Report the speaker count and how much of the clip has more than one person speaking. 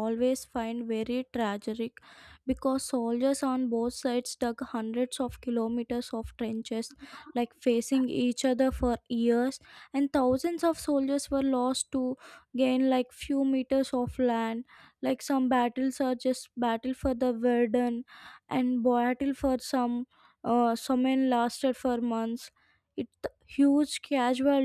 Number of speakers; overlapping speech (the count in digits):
1, no overlap